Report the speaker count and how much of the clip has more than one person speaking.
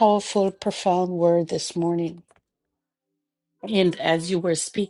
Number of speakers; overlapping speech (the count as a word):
one, no overlap